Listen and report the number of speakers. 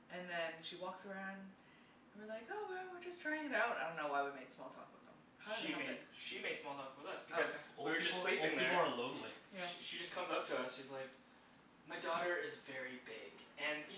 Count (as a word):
three